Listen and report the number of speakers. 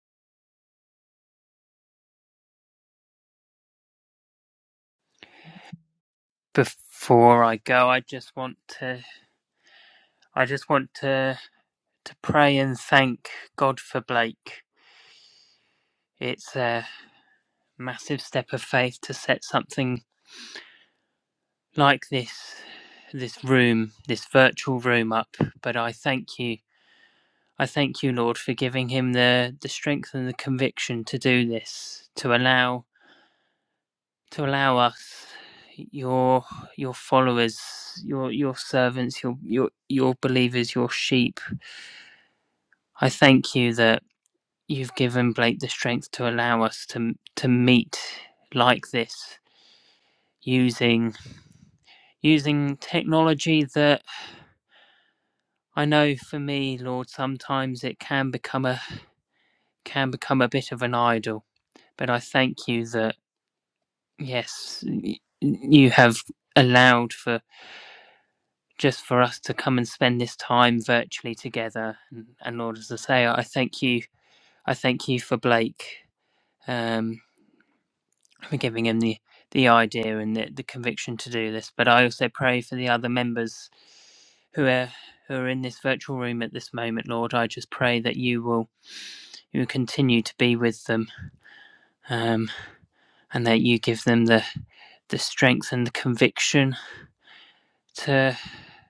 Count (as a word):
one